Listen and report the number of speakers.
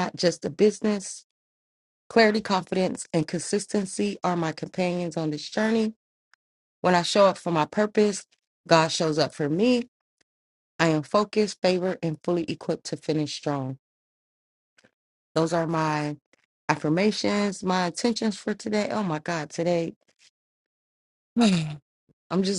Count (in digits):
1